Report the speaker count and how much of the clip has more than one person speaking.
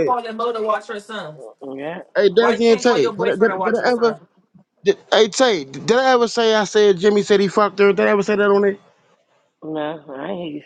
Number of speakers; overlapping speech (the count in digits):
3, about 18%